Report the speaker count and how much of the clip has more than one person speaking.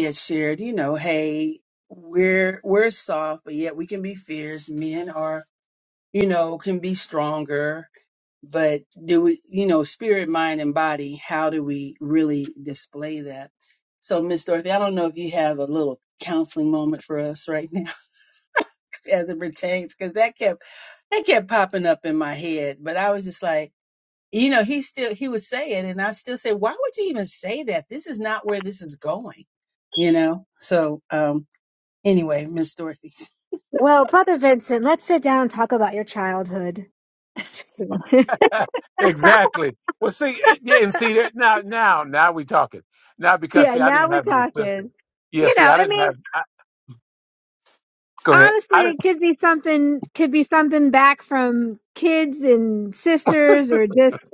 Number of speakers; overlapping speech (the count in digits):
3, about 5%